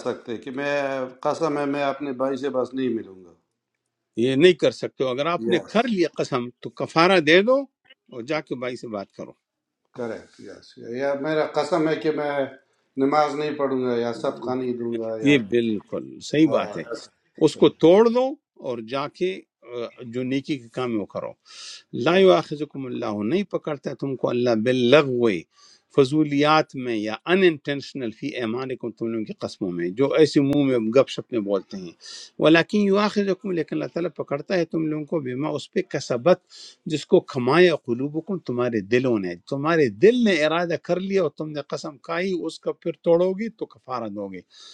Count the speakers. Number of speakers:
2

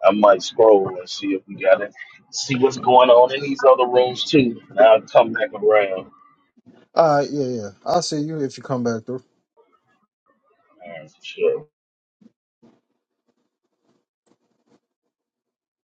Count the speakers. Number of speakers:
2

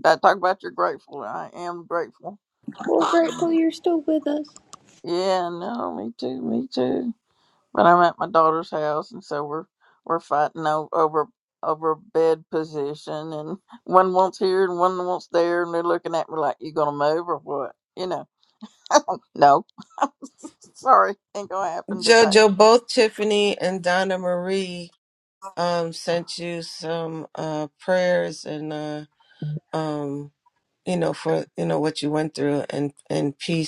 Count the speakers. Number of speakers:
3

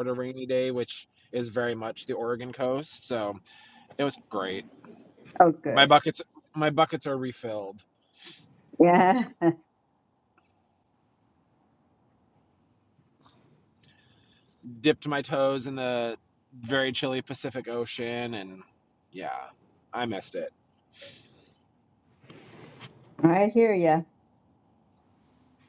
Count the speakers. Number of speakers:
2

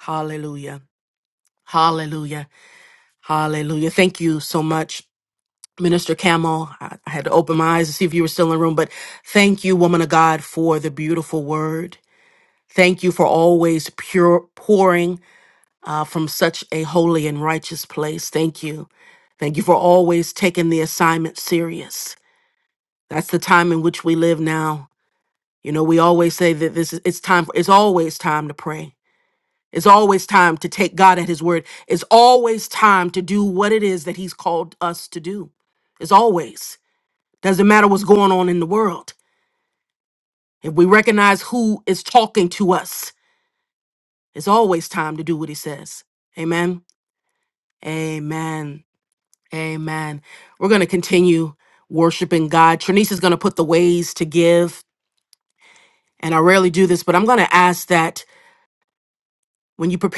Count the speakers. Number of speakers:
1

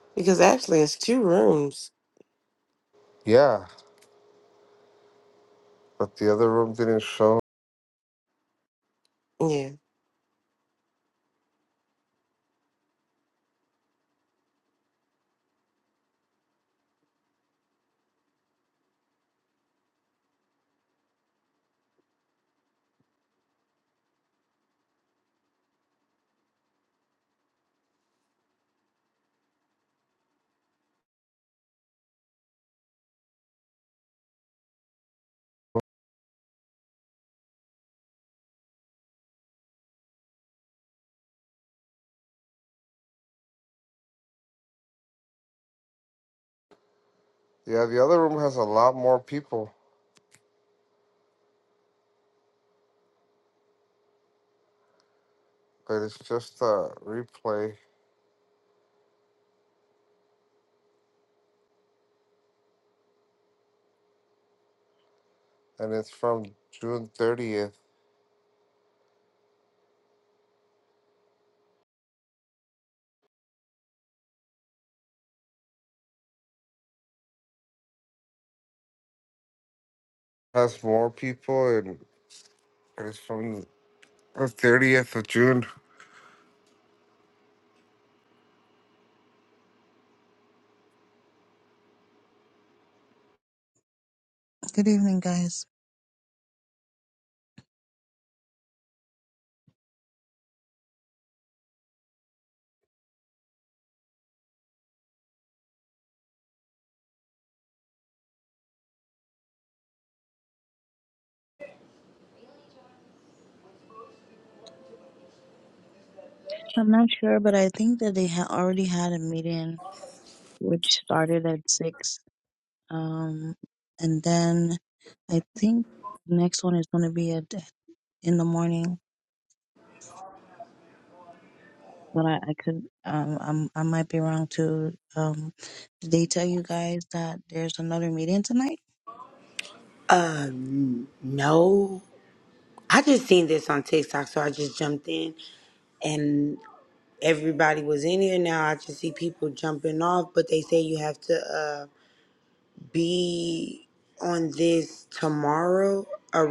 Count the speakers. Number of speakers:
4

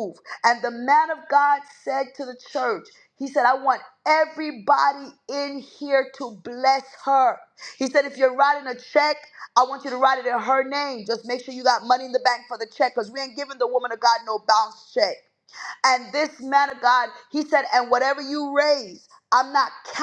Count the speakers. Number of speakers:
1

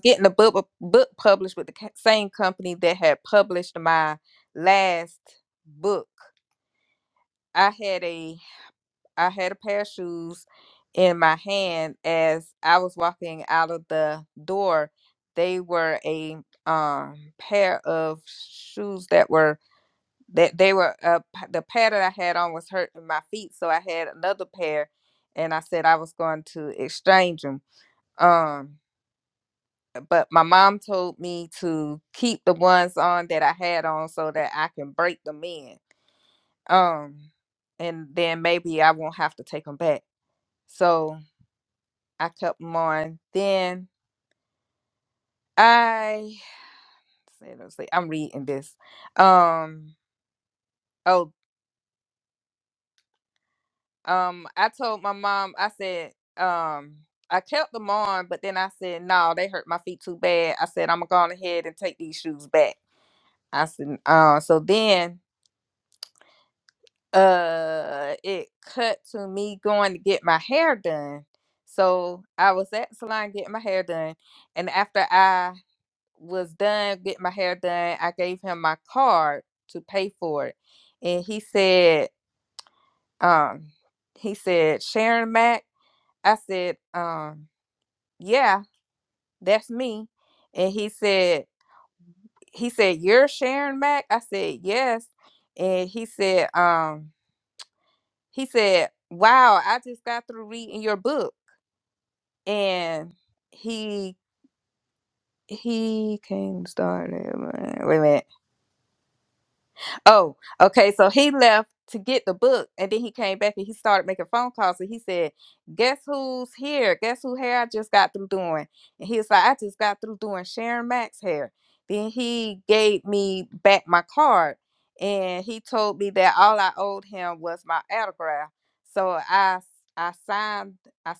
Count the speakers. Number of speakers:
1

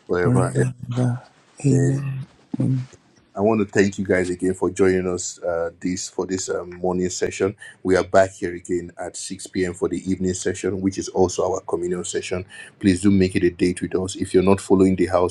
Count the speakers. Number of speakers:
2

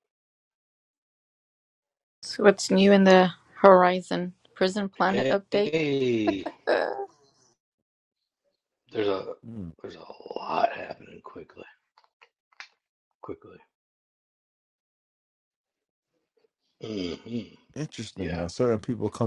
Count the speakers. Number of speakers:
3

